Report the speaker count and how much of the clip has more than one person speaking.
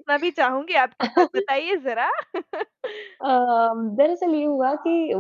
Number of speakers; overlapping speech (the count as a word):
two, no overlap